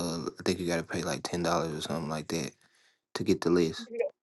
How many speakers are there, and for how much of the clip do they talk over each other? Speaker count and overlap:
1, no overlap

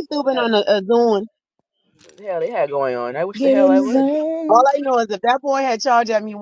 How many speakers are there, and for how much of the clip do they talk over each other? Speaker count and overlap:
3, about 13%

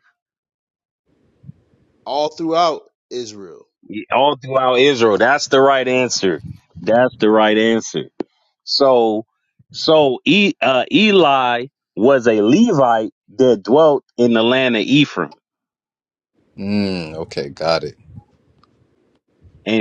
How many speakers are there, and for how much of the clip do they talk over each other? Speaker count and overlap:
3, no overlap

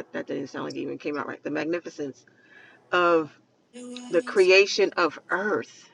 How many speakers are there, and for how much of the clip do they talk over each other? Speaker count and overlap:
1, no overlap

